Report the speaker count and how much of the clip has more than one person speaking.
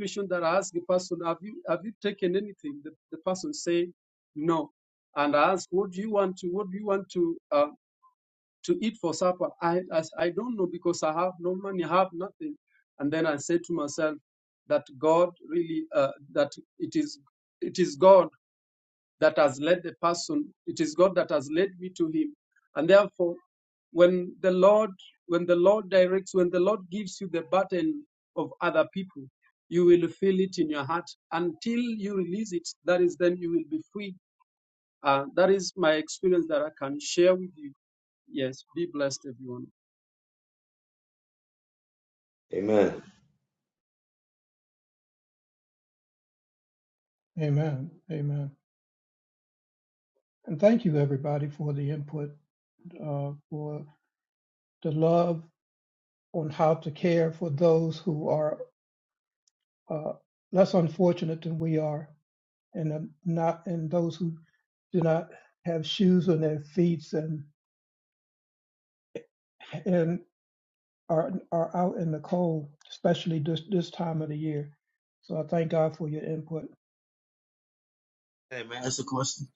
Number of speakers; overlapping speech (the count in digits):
3, no overlap